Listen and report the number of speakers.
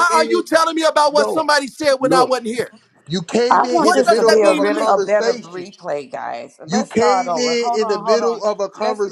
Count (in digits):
3